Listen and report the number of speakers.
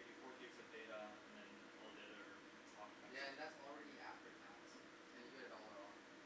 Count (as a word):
two